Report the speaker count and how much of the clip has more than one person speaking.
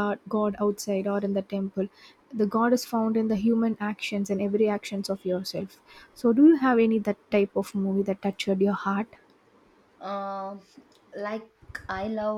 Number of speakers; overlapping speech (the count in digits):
2, no overlap